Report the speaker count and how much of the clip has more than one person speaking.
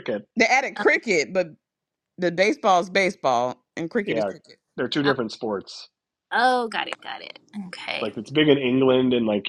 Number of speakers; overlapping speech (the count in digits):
3, about 5%